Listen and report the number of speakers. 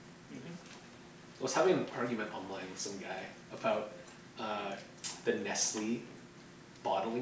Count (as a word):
one